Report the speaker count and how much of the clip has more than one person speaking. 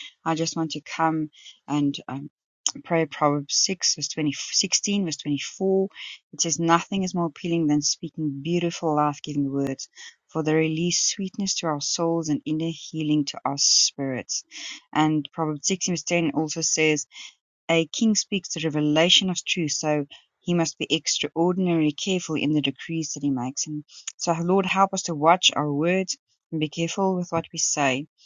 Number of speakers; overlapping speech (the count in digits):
1, no overlap